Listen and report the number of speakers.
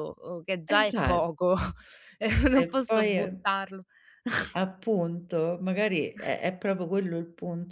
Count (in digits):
2